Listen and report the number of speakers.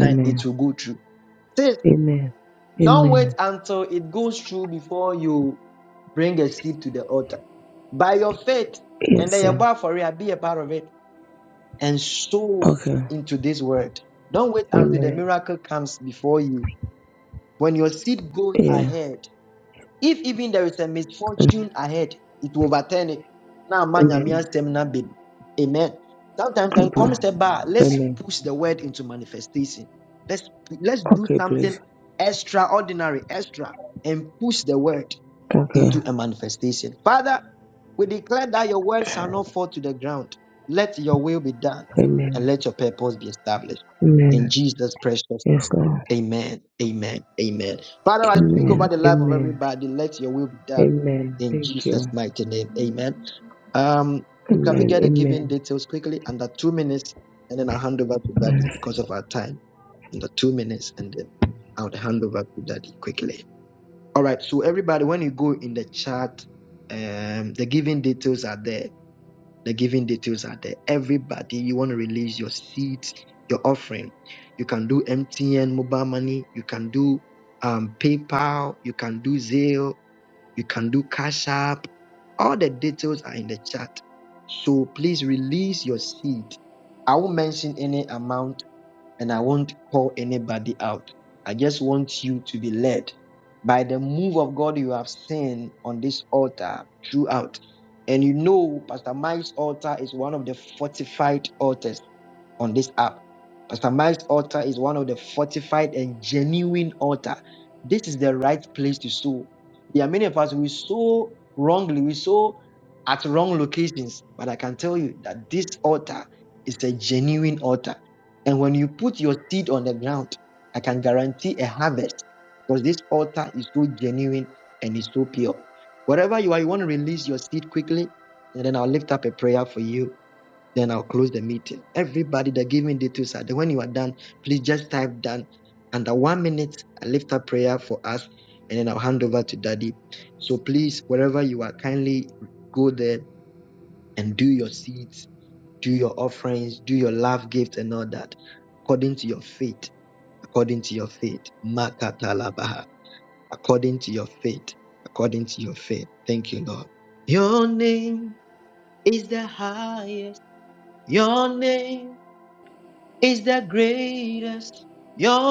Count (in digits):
2